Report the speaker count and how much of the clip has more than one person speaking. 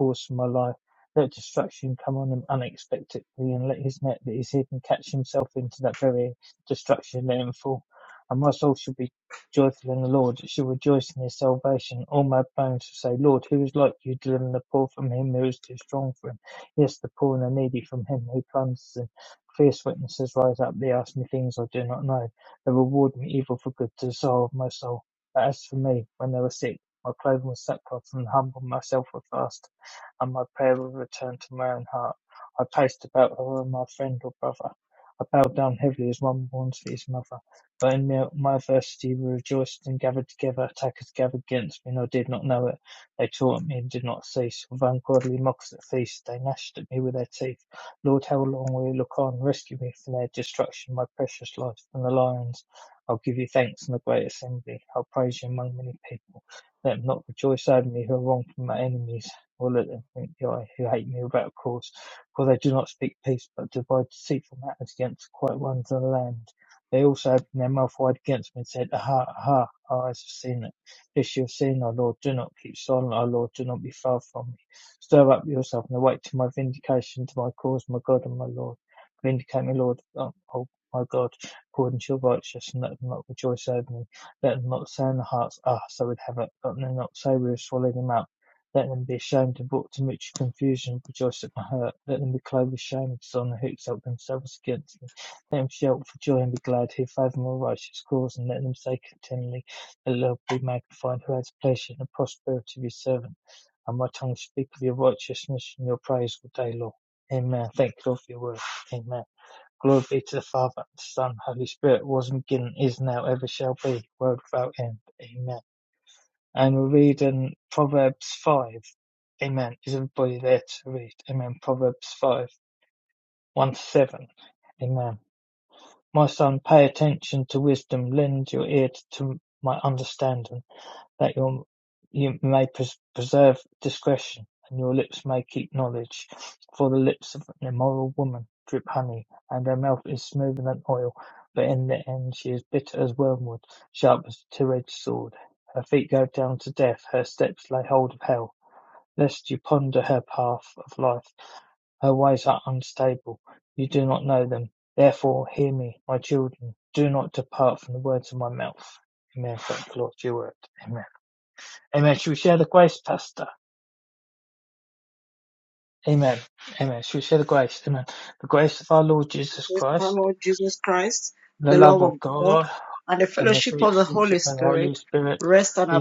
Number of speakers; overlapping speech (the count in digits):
2, about 2%